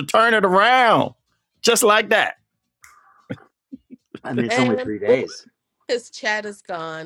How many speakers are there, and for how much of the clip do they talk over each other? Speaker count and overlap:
3, about 6%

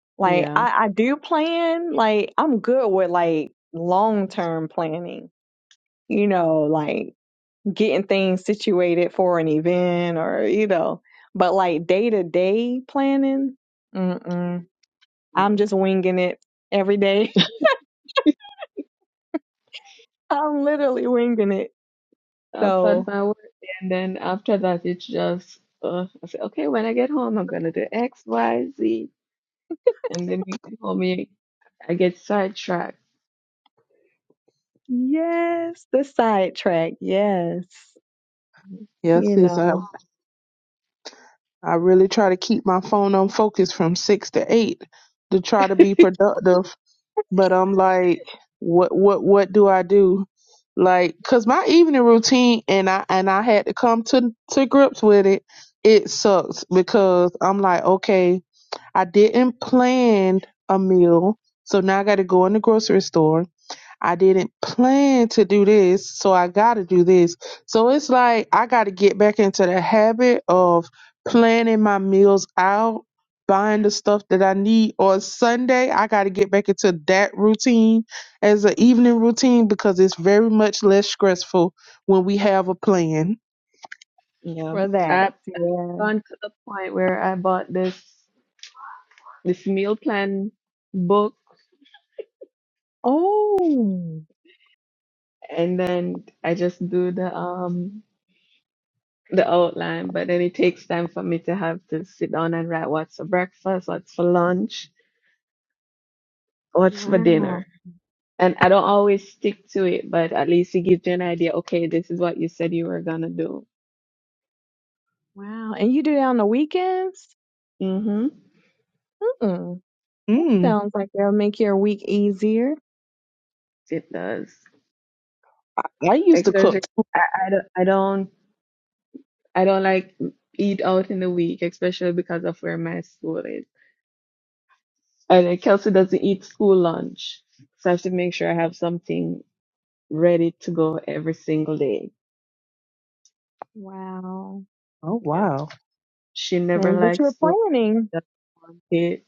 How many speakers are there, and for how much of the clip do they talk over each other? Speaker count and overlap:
3, about 3%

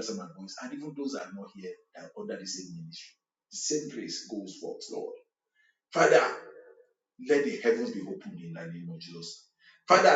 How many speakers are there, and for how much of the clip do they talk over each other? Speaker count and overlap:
1, no overlap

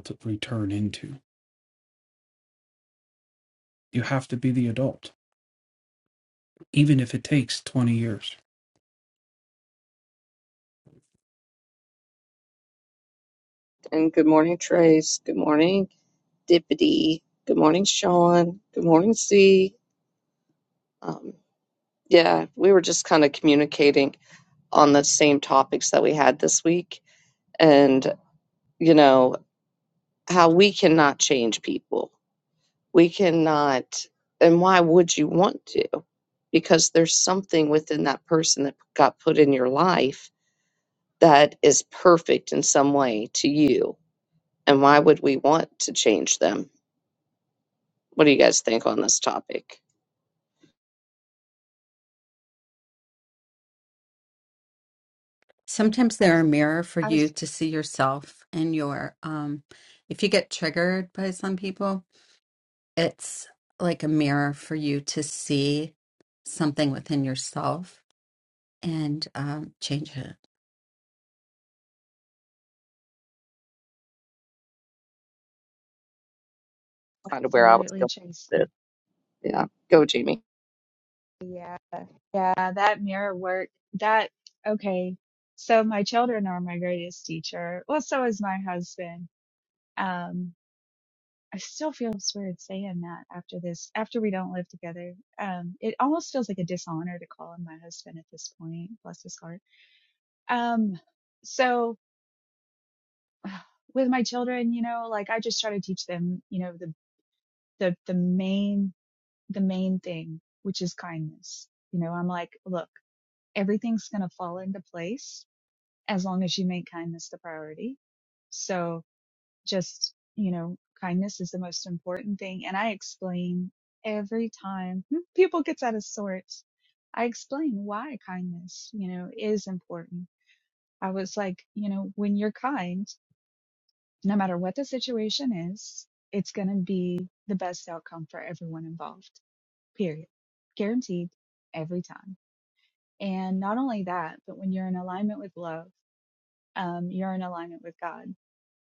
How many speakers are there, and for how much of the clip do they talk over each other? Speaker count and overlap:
4, about 1%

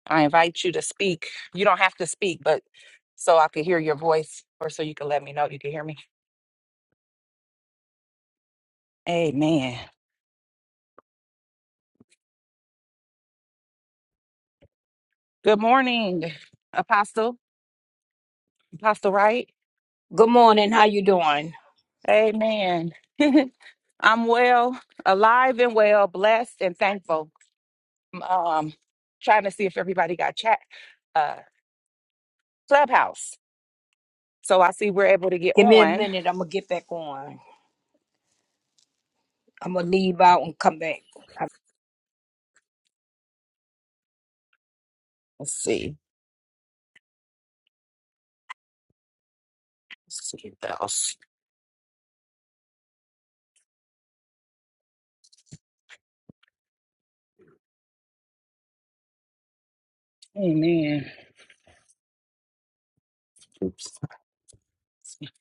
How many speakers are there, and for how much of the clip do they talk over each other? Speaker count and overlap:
2, about 1%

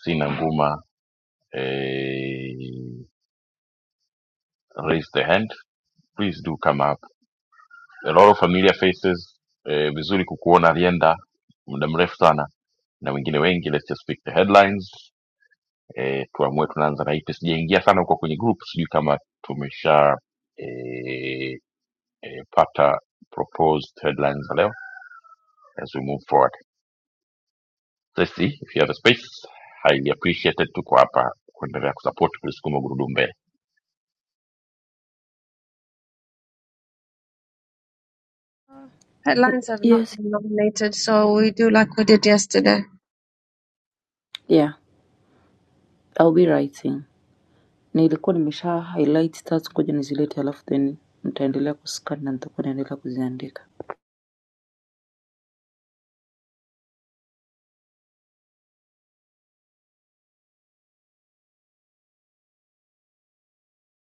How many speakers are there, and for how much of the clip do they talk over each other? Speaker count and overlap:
3, about 1%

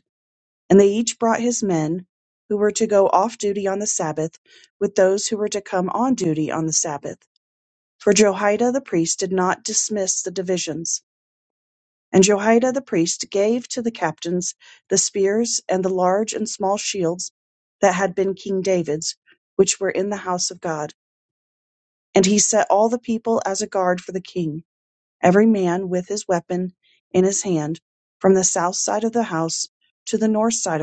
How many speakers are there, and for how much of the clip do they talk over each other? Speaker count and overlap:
1, no overlap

